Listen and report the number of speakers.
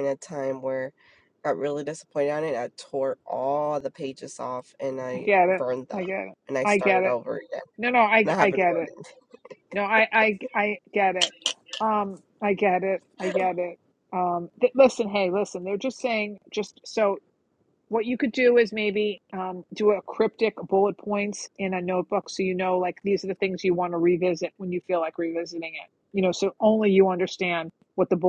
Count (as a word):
two